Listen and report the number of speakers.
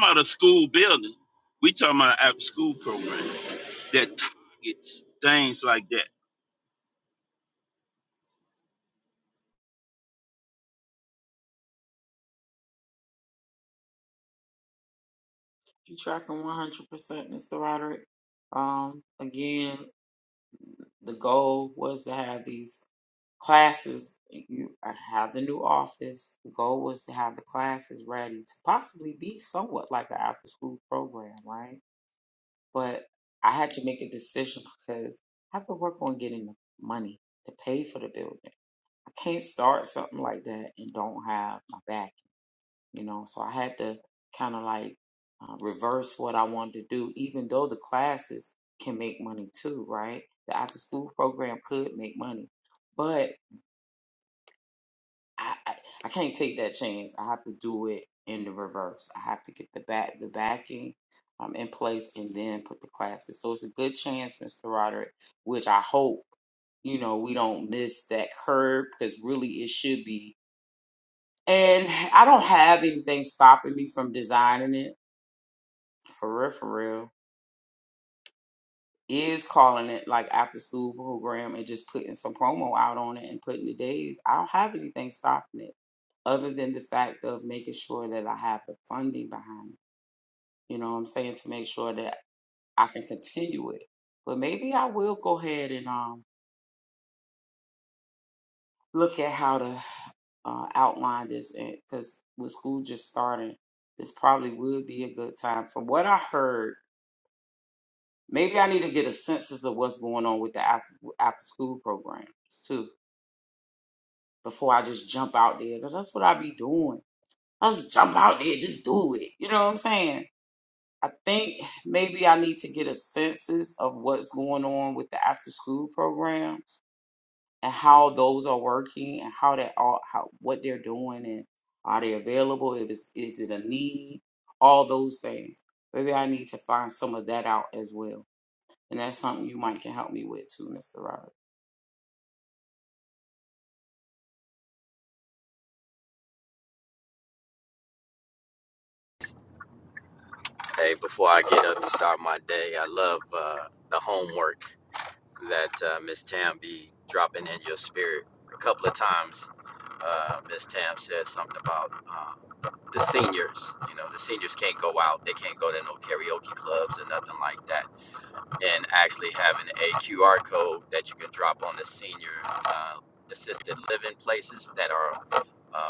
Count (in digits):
3